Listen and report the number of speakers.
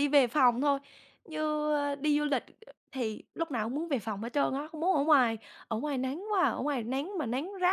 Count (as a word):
one